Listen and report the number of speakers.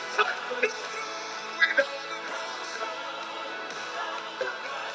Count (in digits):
0